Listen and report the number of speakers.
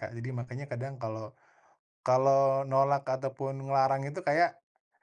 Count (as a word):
one